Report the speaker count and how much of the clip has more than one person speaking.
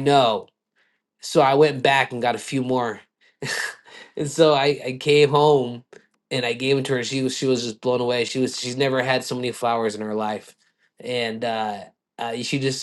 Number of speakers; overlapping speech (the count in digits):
1, no overlap